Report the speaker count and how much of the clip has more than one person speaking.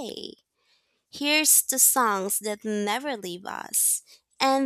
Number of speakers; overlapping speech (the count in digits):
1, no overlap